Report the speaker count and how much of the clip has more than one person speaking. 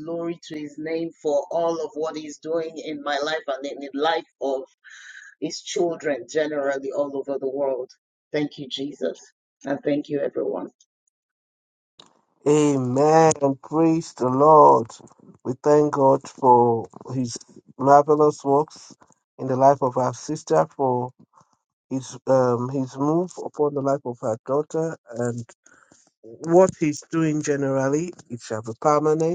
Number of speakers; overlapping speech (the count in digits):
2, no overlap